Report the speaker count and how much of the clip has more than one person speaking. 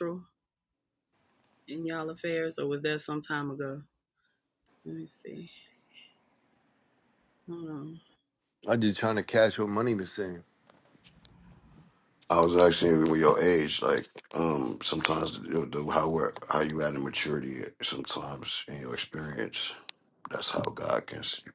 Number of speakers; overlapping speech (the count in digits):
3, no overlap